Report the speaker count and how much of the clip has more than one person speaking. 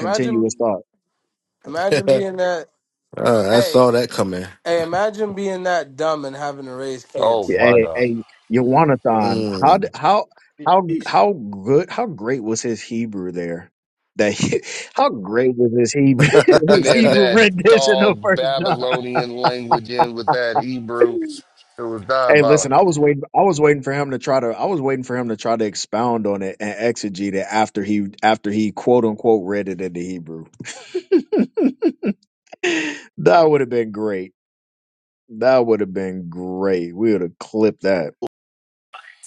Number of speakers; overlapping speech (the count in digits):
4, about 12%